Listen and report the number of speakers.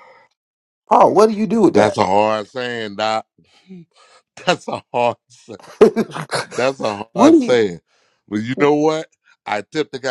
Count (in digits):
2